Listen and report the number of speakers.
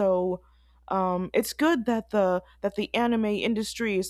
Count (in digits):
1